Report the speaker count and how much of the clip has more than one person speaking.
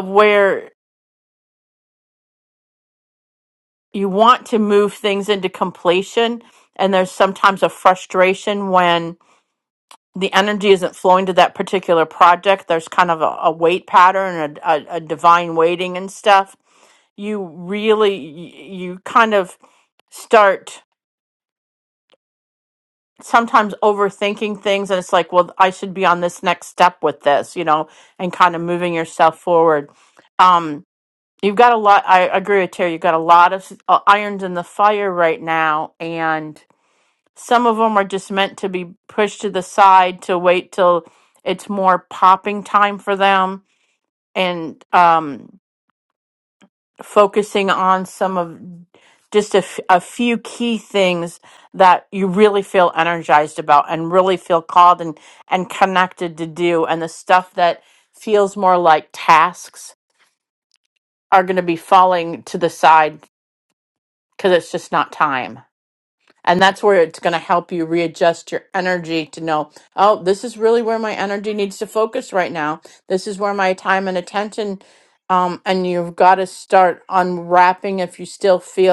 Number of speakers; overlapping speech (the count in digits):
1, no overlap